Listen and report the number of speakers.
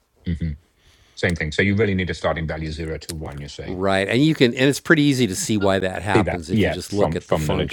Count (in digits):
2